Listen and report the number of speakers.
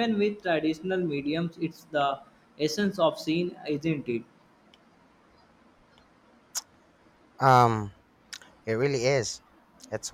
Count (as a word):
two